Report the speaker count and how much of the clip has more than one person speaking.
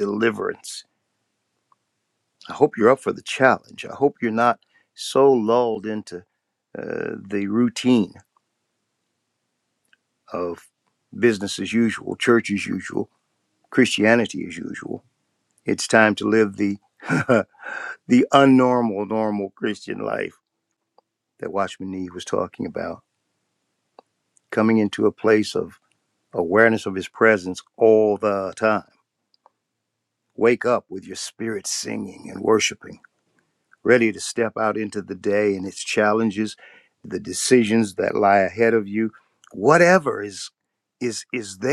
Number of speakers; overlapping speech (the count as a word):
one, no overlap